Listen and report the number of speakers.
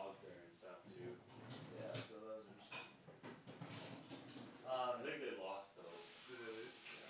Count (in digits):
2